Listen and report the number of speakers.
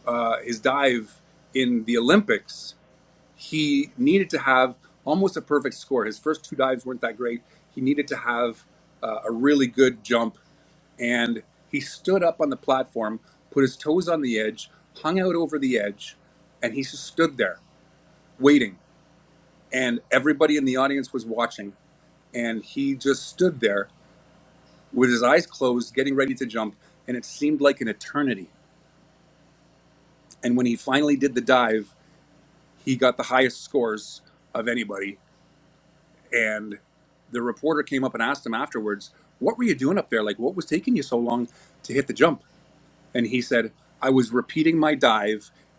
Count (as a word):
one